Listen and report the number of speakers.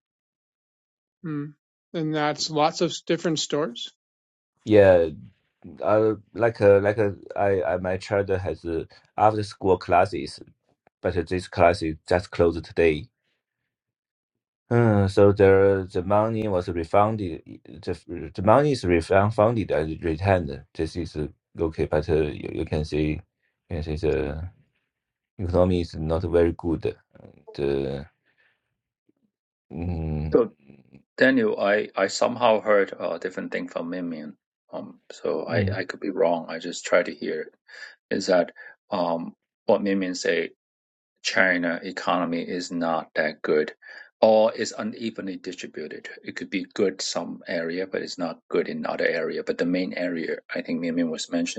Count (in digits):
3